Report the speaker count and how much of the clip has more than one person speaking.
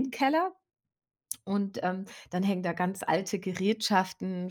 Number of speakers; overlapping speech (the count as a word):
one, no overlap